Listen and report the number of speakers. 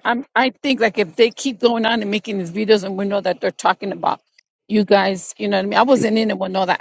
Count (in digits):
1